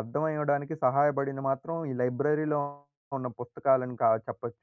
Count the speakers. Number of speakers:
1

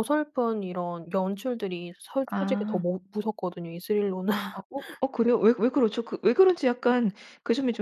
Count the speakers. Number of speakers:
2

